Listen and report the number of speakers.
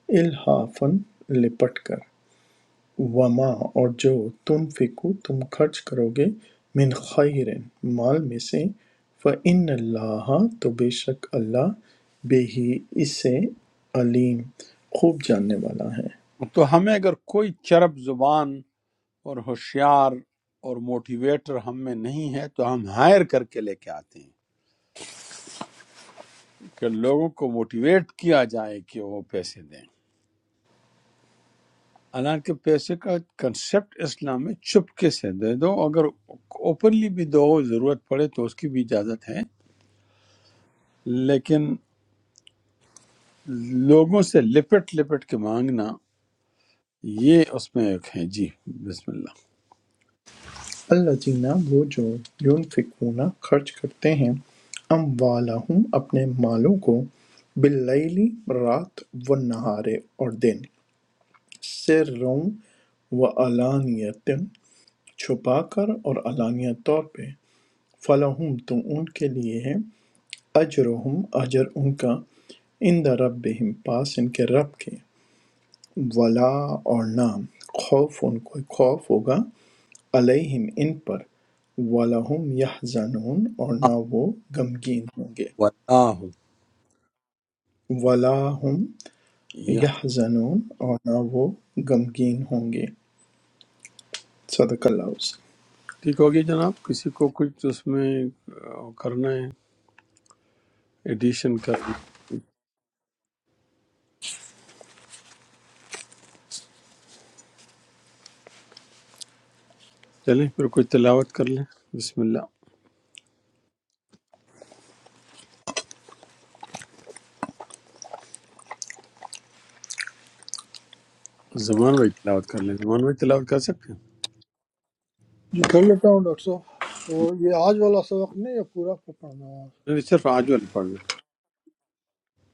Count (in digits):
3